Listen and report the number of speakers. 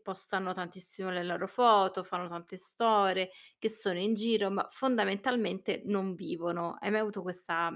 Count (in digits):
1